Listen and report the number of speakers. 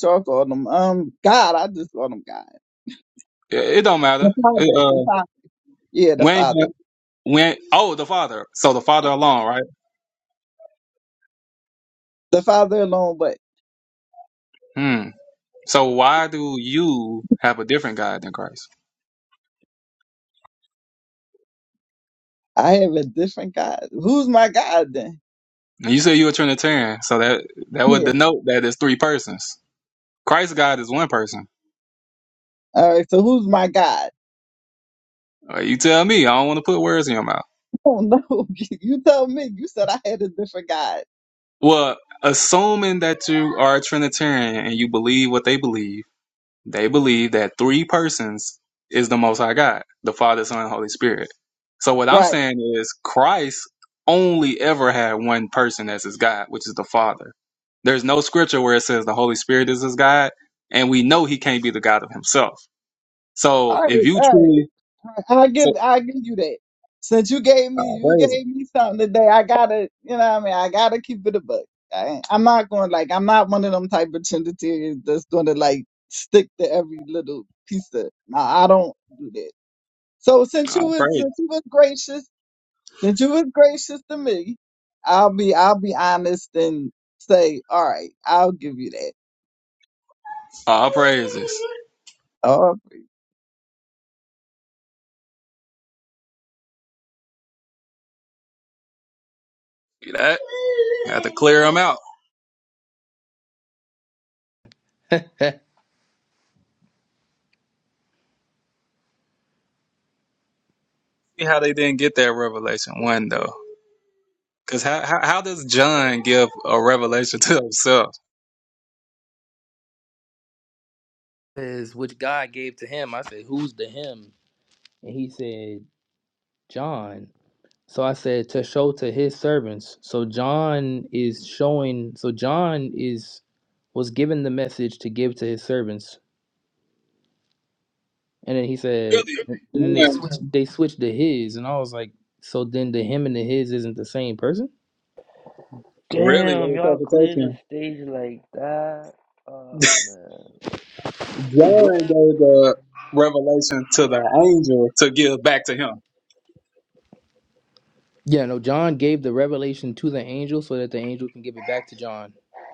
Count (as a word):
four